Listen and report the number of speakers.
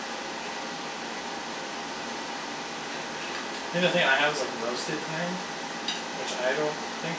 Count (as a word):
one